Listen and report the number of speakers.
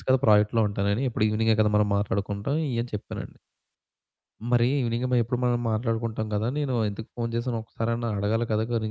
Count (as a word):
one